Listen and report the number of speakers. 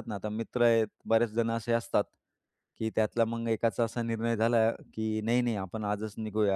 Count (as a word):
one